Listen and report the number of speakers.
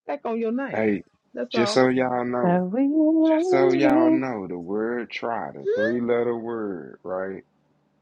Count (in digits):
3